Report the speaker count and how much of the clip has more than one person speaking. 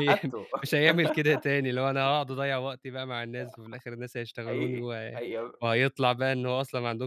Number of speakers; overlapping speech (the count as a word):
two, about 12%